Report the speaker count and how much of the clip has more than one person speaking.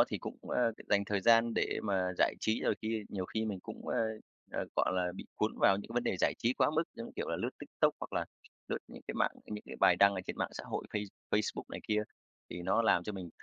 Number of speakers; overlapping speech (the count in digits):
1, no overlap